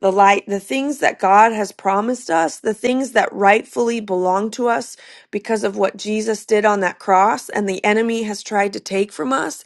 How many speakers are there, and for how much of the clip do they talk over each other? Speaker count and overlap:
1, no overlap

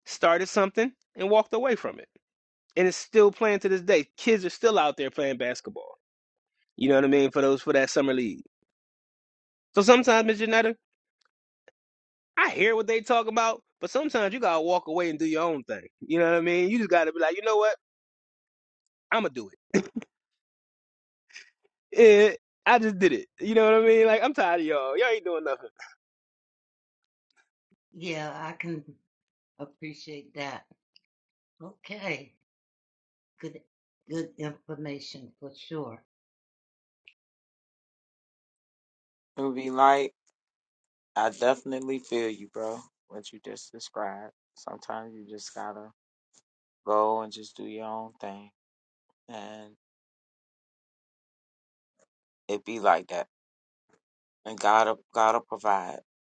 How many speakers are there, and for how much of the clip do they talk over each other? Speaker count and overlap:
3, no overlap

